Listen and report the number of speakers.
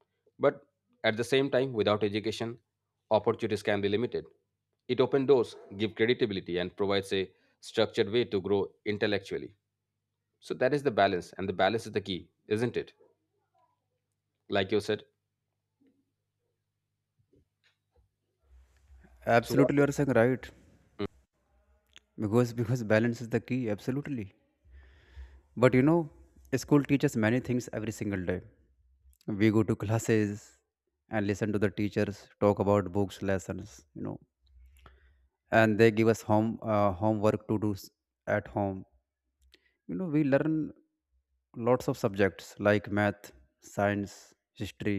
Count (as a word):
two